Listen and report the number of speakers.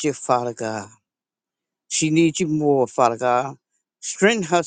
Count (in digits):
1